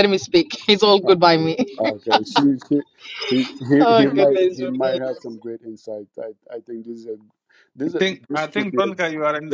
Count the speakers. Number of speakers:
3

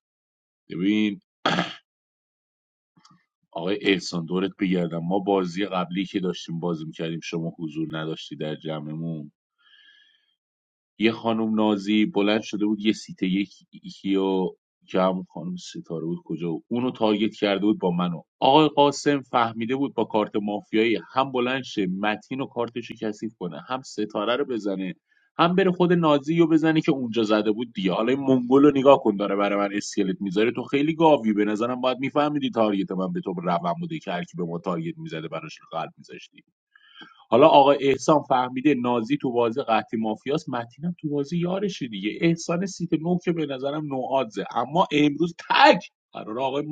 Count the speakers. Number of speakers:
1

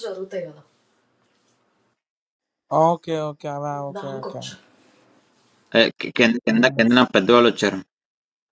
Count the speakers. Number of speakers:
3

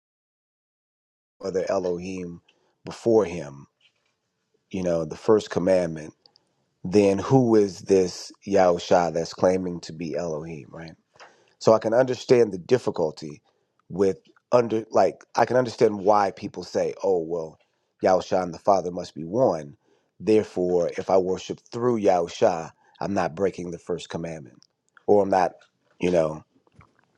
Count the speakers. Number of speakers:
1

